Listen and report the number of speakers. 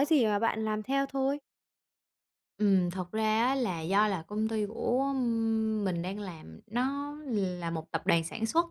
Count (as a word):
two